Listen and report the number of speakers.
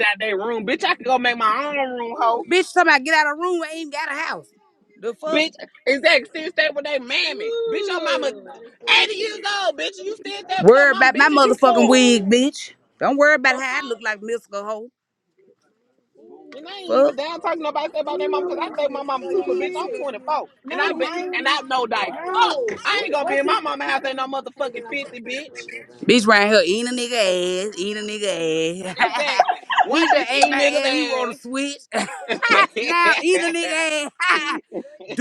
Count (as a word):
two